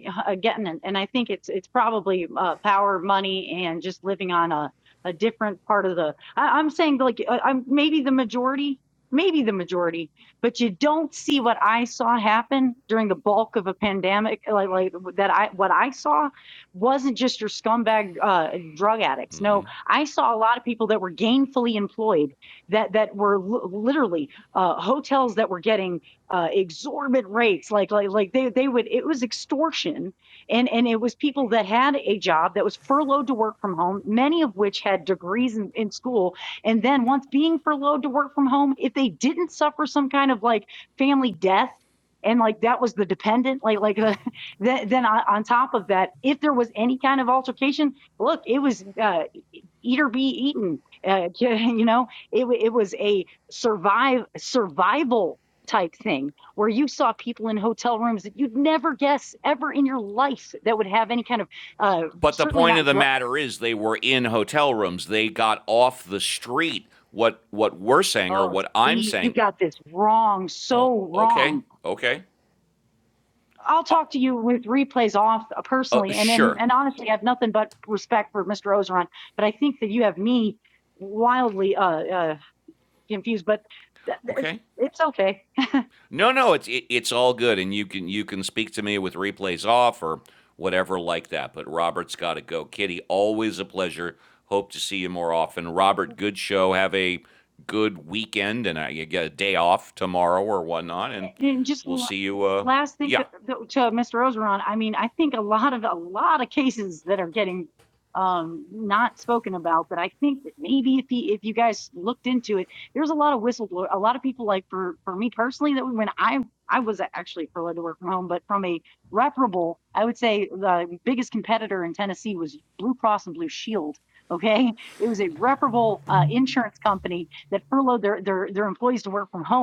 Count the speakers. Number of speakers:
2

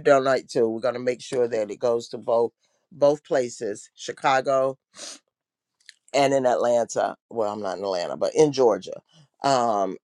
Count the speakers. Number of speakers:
1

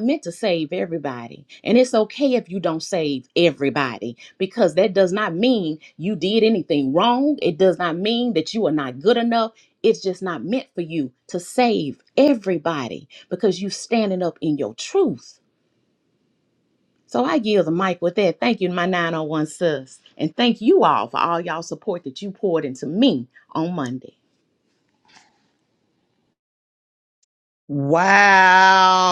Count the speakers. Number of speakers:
2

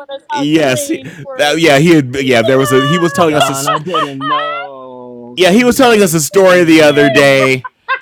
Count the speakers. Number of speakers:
3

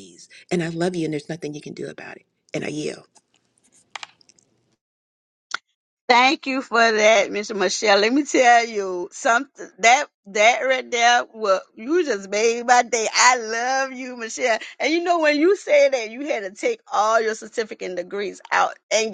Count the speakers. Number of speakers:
2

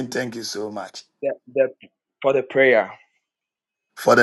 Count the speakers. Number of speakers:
2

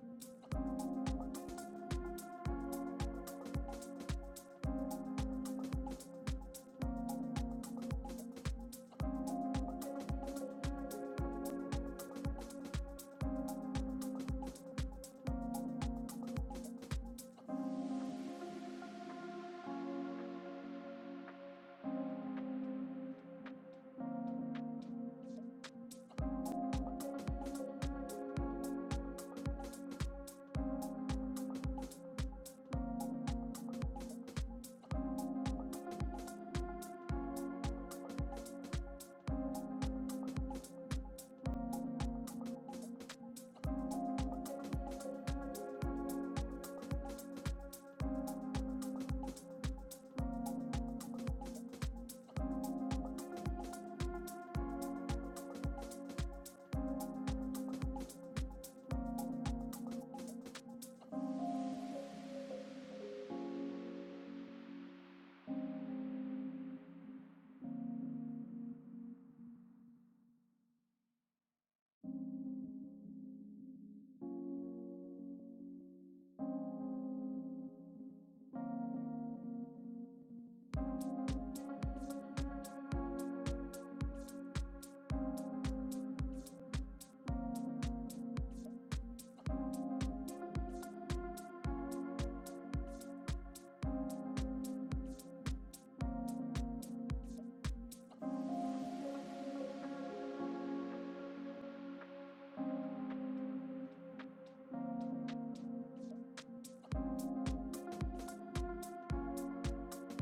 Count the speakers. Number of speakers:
0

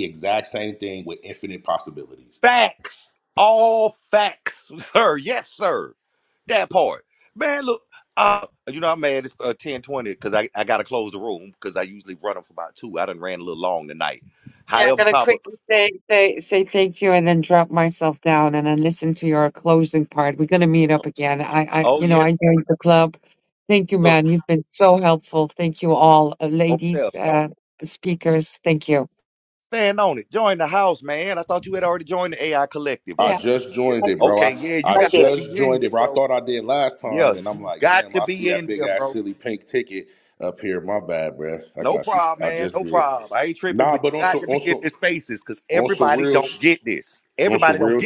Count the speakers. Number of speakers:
3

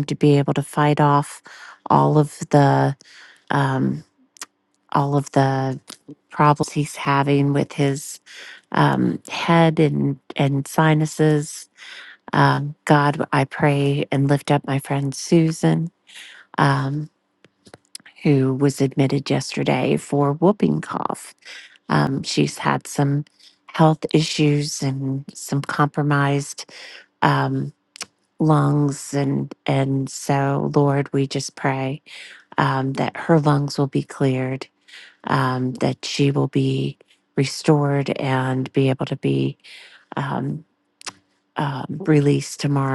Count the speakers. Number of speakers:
1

